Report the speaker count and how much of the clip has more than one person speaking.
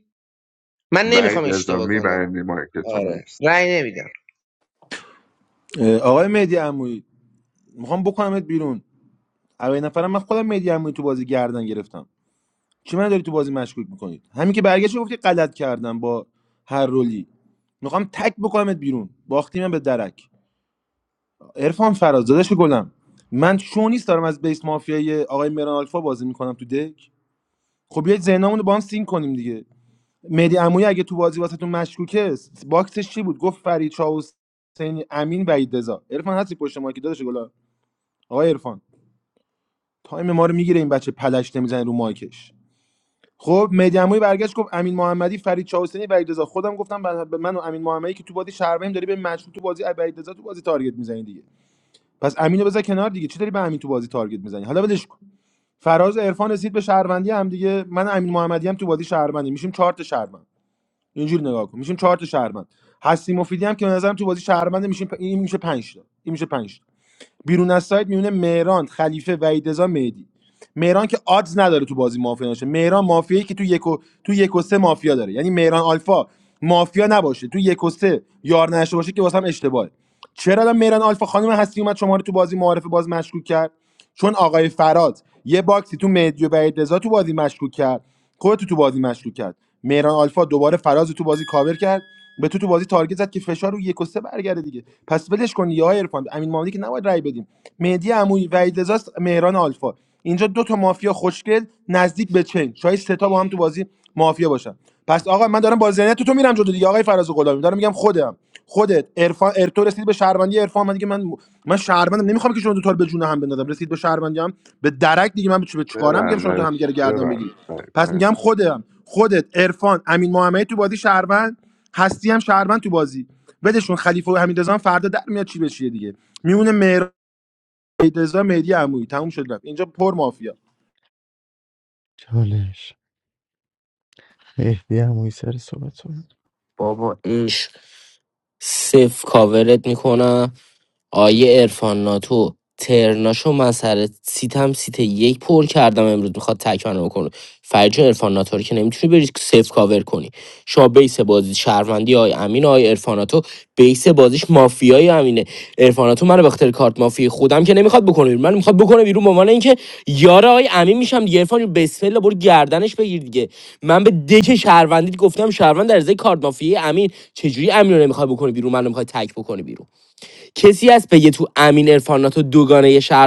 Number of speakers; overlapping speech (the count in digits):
5, about 2%